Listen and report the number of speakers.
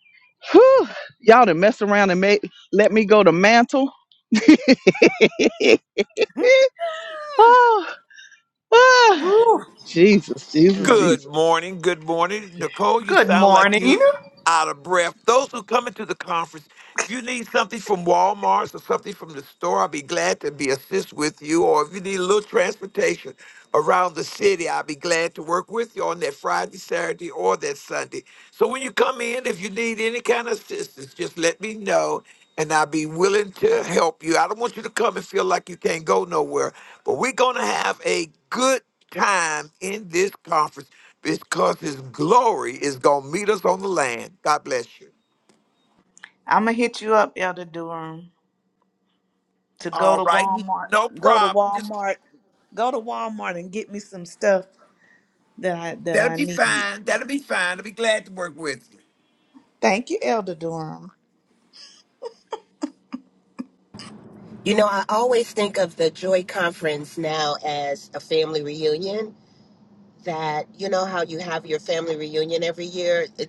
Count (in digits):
4